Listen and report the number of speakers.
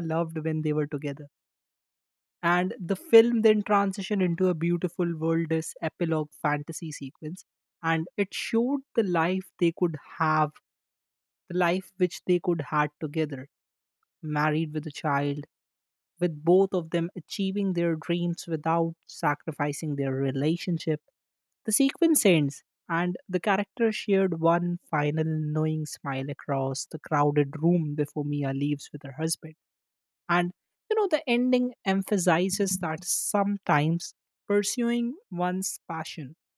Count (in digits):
1